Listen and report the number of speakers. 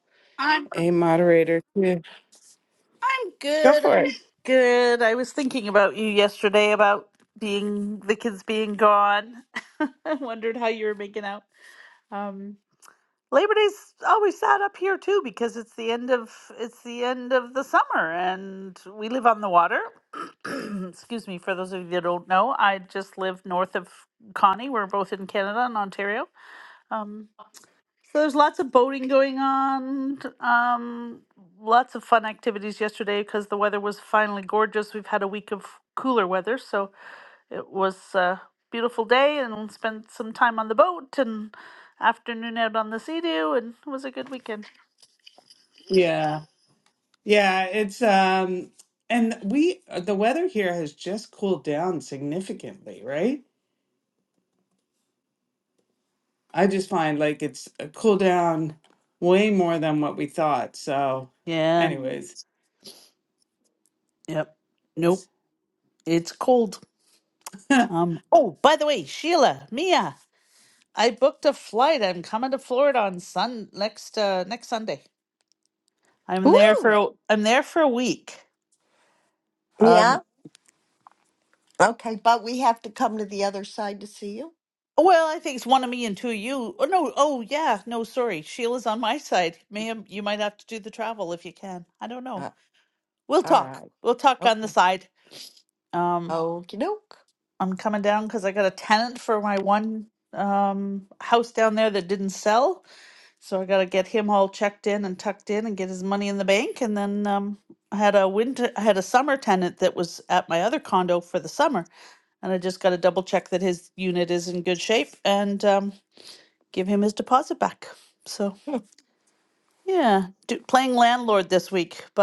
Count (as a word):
three